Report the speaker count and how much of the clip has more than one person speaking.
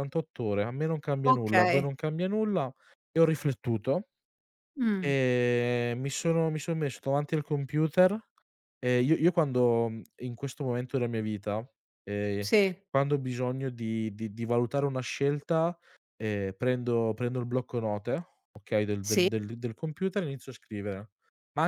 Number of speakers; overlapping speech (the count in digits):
2, about 4%